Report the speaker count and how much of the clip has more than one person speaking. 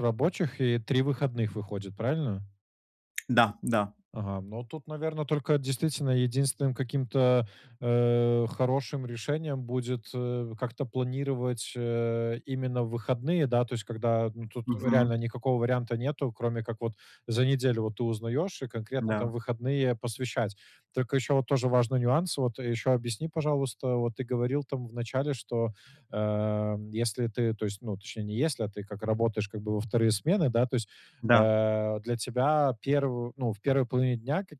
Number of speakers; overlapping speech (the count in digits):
2, about 3%